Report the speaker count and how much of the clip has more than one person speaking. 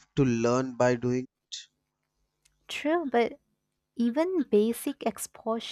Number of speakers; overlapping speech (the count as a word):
two, no overlap